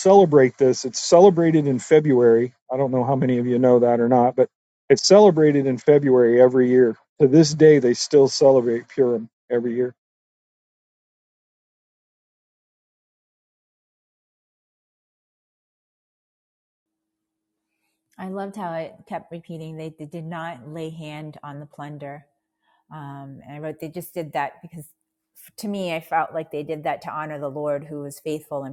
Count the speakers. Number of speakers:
two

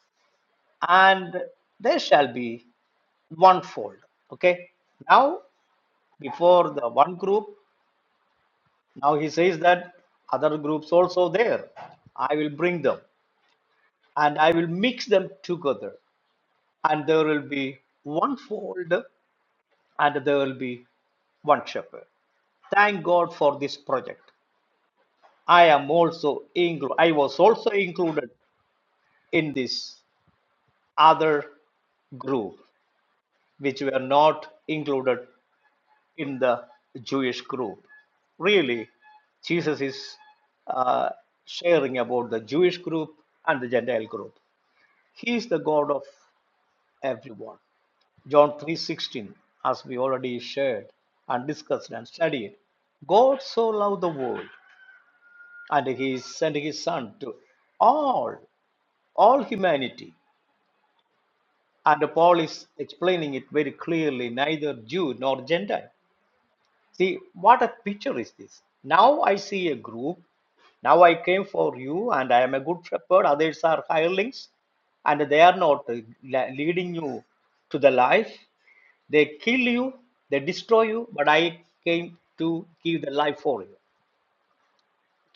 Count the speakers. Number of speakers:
one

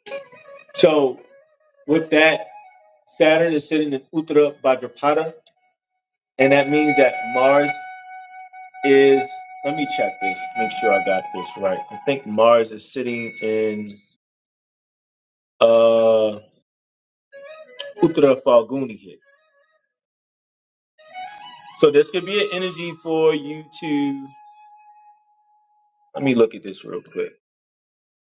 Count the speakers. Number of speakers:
one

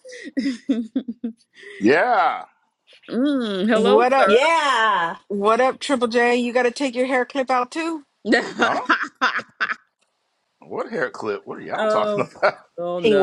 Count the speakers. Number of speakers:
four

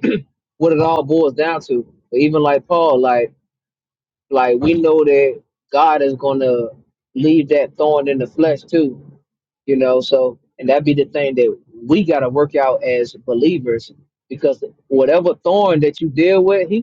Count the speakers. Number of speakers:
one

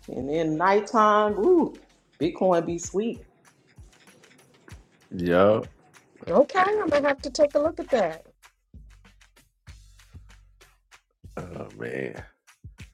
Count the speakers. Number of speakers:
three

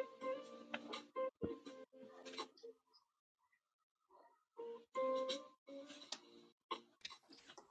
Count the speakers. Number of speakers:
zero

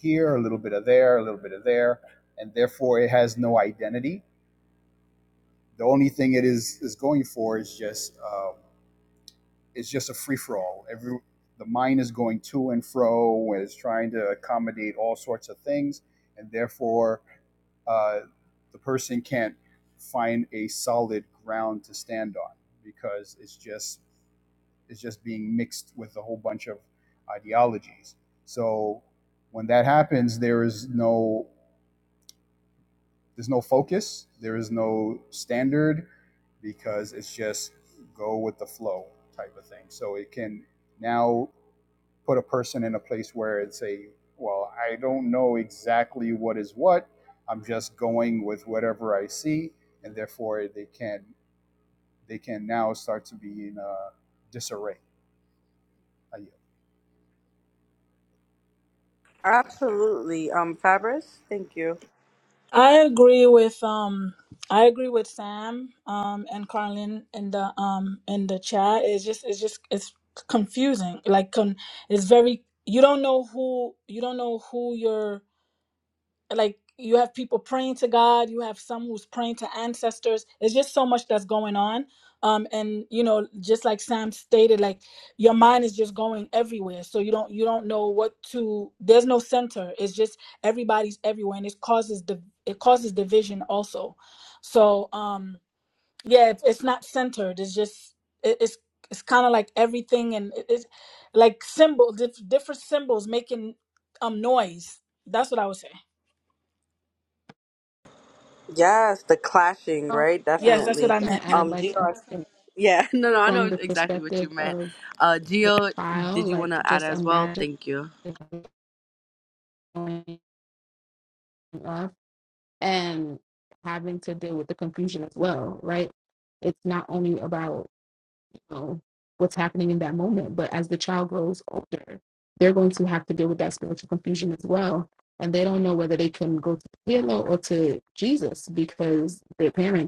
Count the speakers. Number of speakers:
four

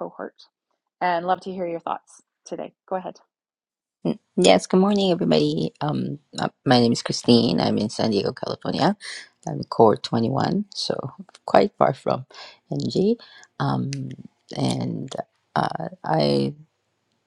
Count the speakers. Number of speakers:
two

